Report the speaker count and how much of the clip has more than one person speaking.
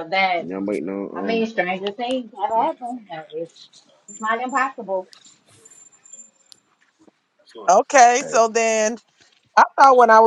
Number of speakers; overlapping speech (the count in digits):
3, about 7%